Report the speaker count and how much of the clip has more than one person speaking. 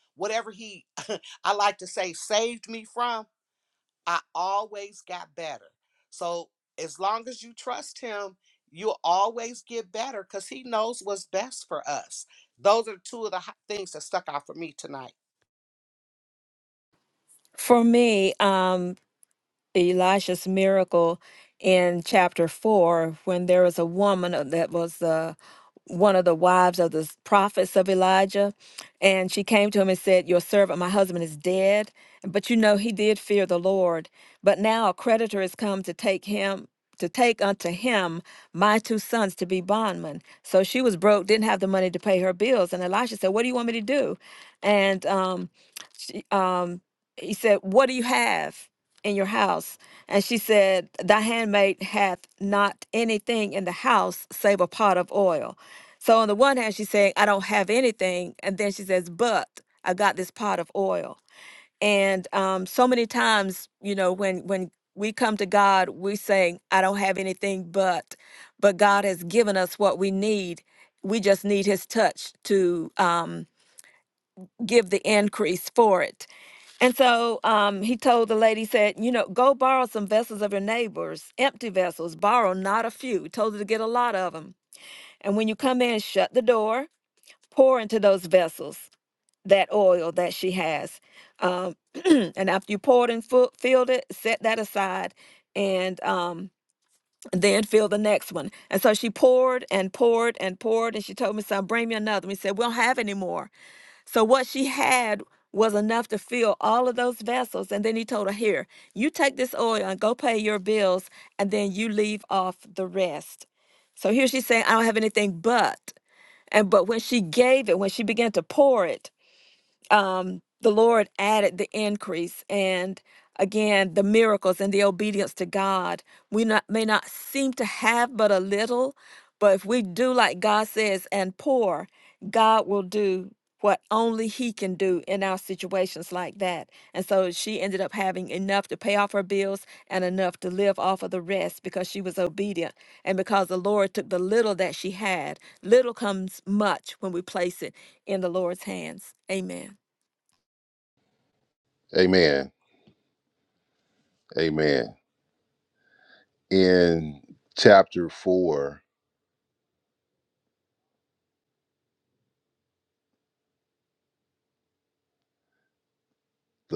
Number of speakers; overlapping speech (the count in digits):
3, no overlap